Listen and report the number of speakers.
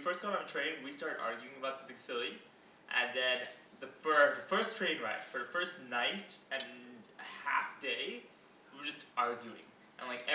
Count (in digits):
1